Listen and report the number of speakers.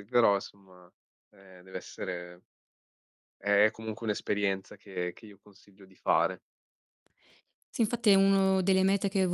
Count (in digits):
2